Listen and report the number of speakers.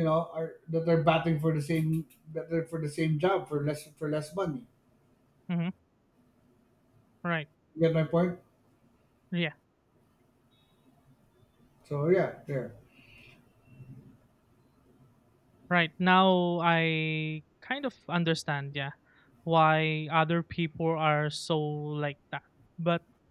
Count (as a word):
two